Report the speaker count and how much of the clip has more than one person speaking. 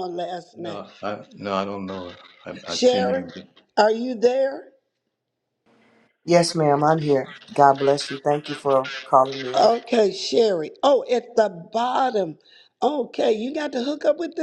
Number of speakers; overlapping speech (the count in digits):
3, about 7%